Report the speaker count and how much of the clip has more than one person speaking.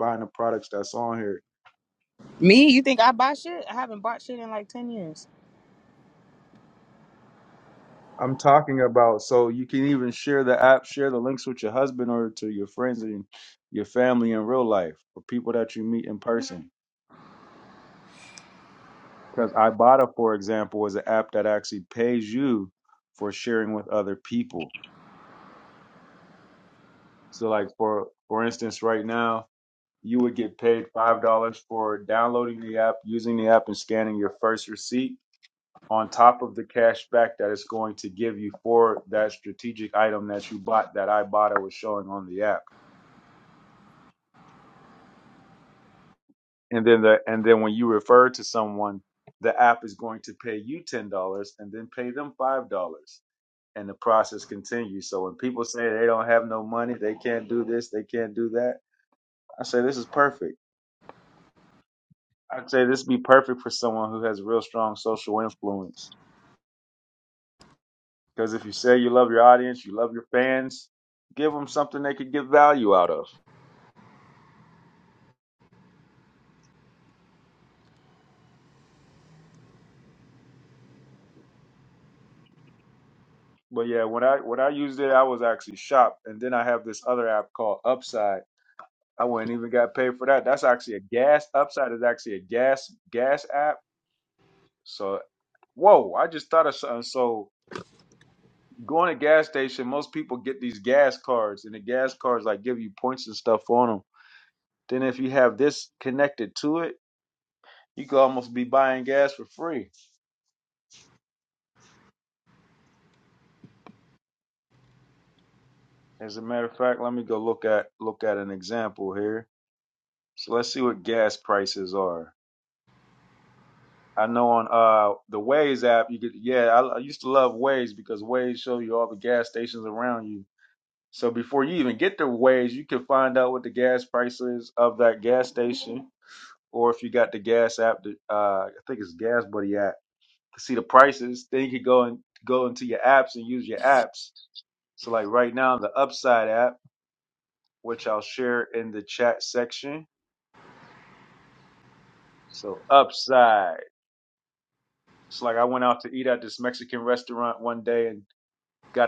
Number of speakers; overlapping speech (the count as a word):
two, no overlap